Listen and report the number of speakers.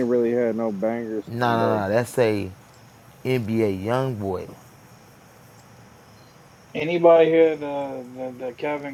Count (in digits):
3